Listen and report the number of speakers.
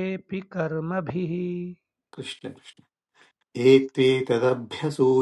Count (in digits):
2